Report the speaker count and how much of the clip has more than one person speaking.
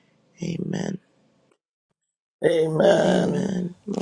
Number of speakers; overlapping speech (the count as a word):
two, about 12%